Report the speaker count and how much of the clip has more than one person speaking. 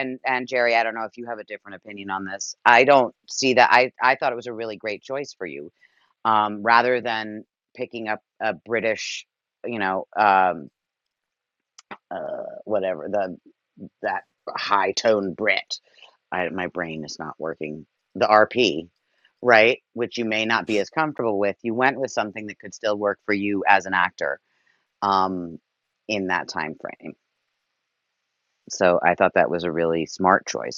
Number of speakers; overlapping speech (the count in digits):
1, no overlap